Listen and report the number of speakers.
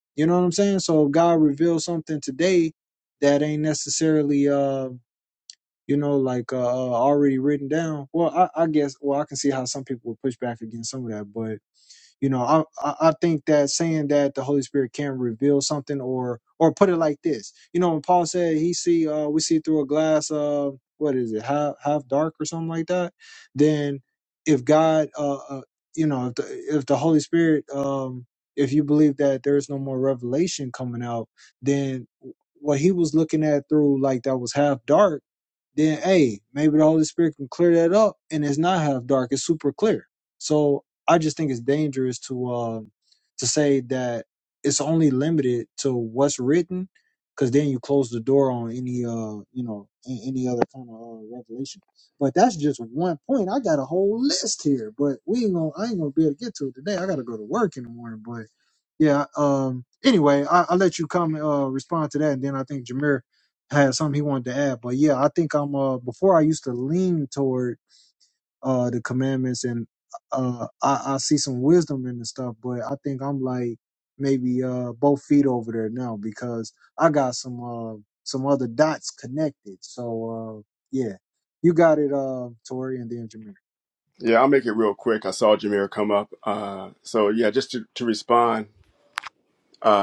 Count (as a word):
two